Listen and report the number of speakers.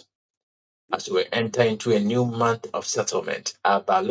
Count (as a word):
one